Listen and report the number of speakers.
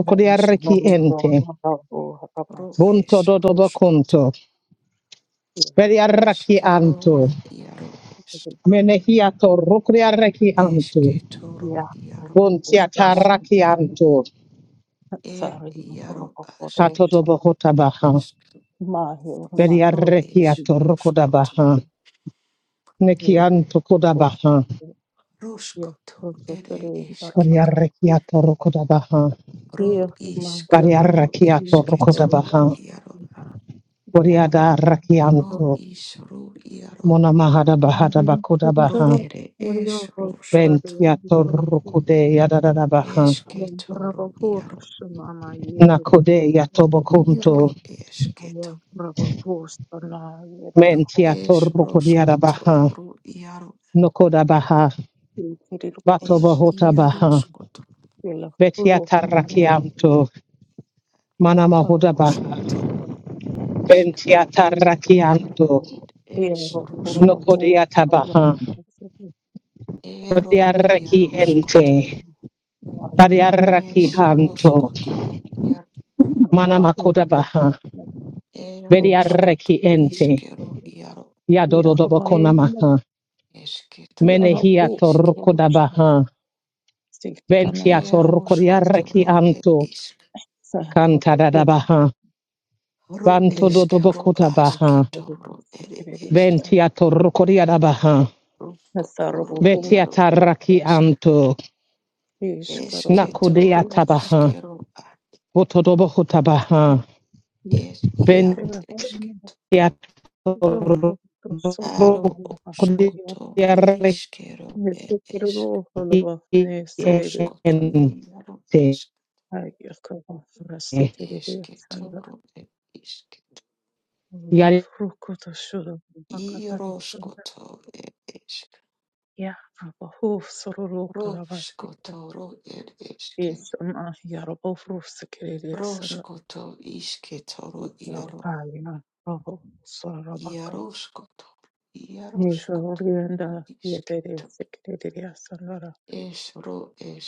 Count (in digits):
3